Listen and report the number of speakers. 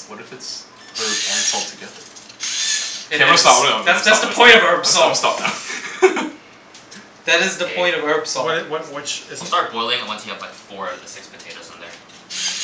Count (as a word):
four